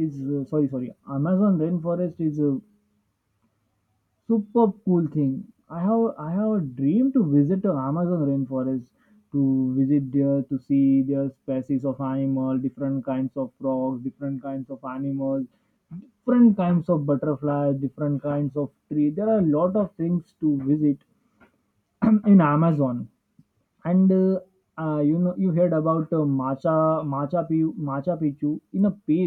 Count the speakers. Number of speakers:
one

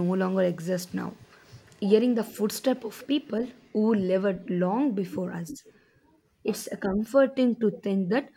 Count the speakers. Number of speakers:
one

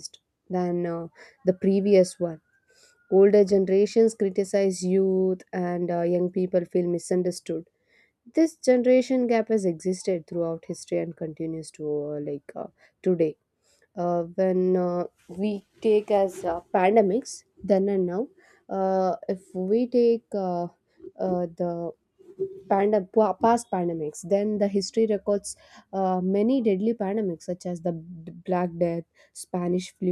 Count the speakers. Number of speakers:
one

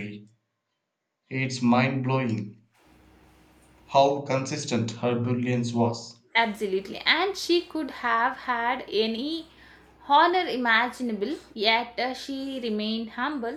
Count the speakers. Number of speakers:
two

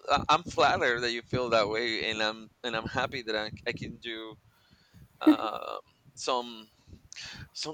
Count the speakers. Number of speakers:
one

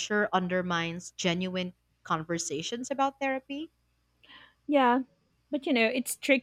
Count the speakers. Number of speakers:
two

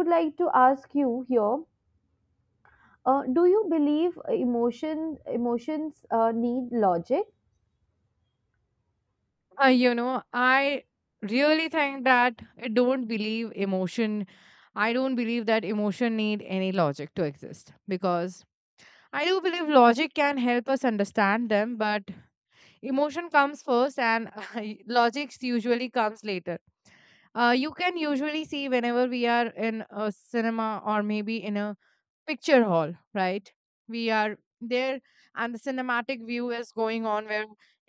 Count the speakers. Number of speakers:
two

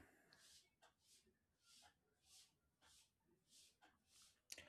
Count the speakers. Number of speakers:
zero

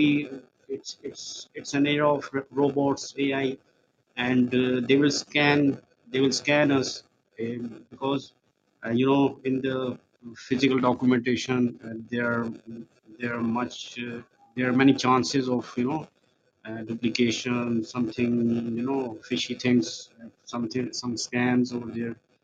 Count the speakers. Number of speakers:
one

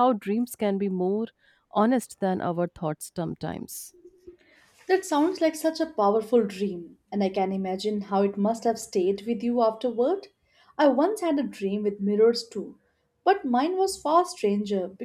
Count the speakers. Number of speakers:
two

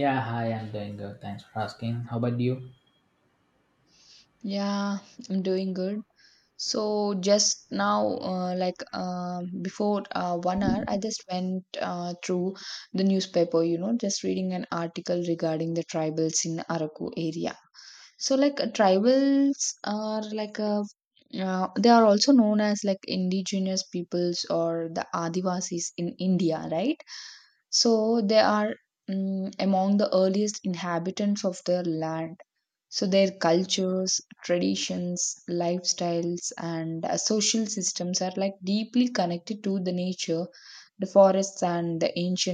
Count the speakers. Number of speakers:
two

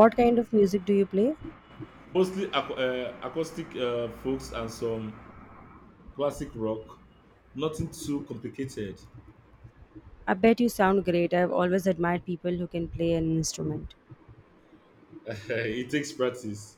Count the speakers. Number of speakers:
two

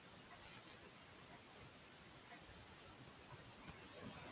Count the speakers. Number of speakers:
zero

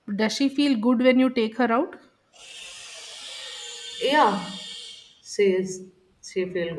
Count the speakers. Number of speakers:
two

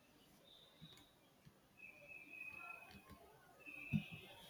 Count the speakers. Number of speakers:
zero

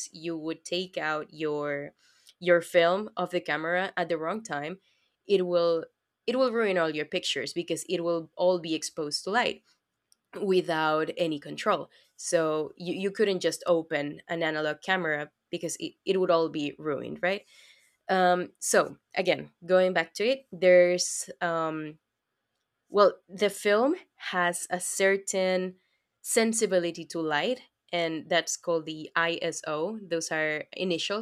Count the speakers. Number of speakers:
one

